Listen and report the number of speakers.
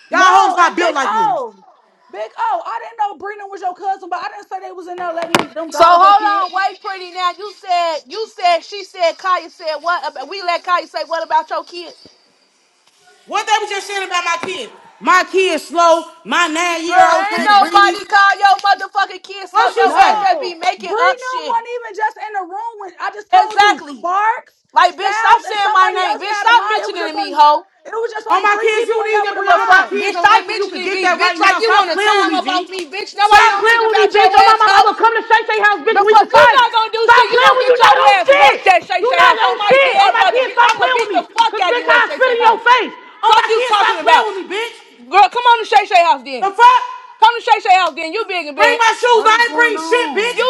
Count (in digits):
3